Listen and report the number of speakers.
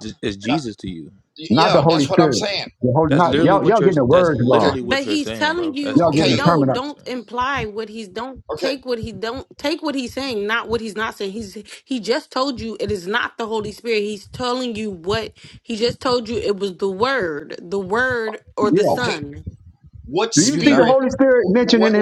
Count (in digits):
4